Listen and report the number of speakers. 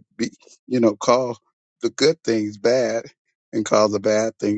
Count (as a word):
one